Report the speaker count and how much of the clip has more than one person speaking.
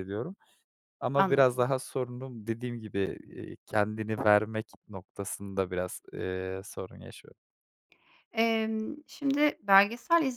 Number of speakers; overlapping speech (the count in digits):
2, about 4%